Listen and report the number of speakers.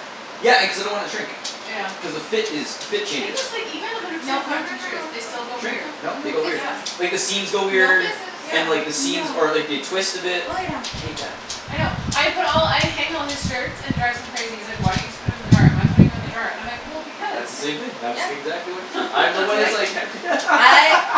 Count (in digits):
3